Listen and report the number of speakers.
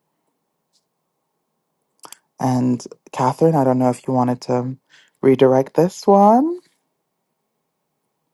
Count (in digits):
1